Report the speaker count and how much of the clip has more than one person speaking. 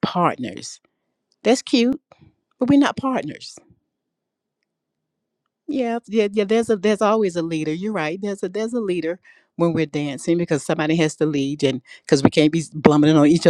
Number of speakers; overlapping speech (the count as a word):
one, no overlap